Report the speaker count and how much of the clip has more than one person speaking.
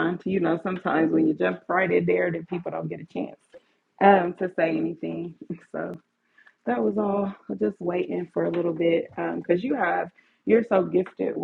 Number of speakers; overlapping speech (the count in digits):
1, no overlap